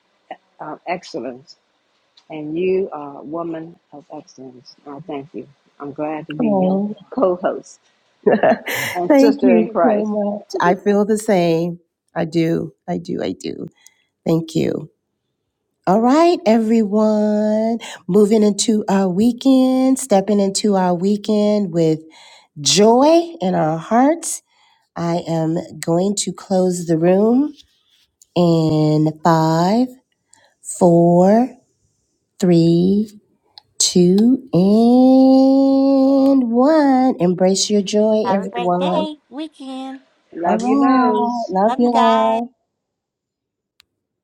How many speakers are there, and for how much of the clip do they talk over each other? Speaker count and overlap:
3, about 9%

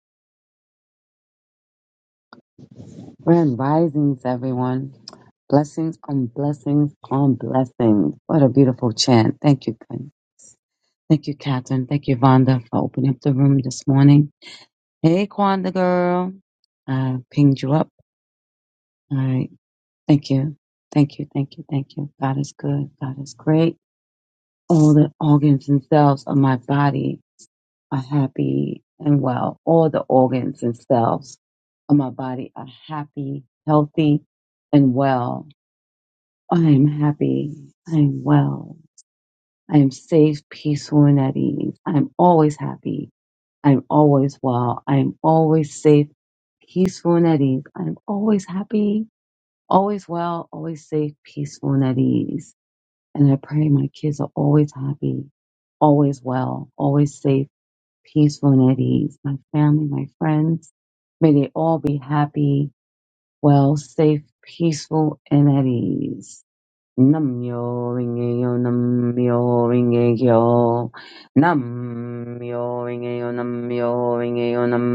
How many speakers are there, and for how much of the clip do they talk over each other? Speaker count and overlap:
1, no overlap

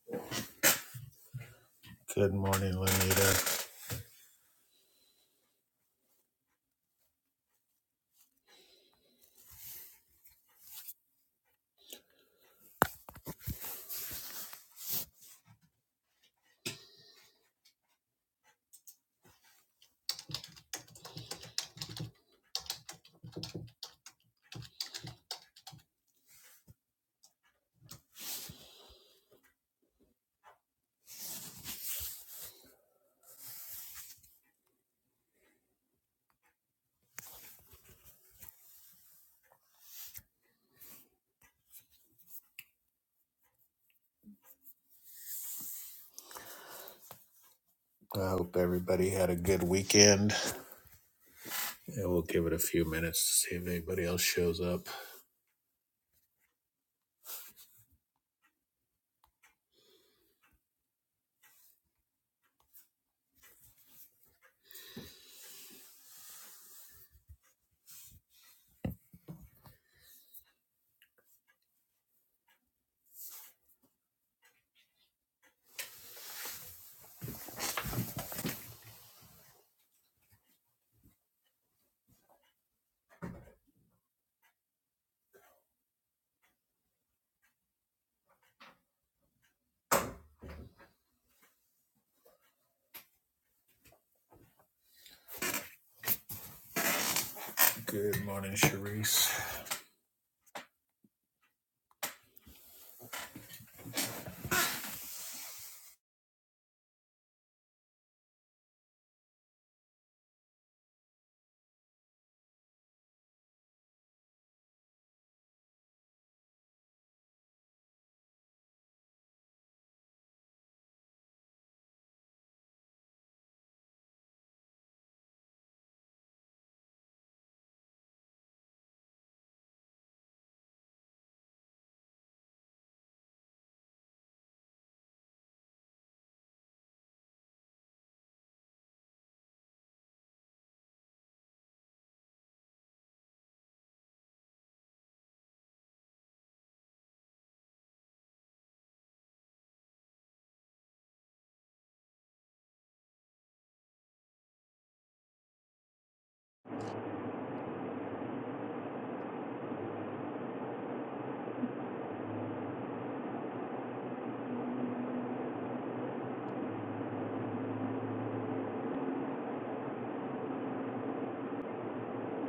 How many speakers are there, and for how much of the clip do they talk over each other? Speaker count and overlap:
1, no overlap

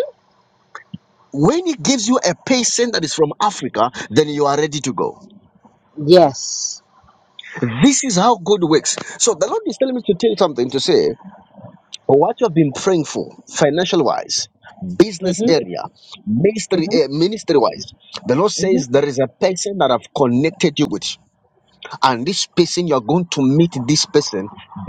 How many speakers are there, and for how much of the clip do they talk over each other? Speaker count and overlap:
2, about 3%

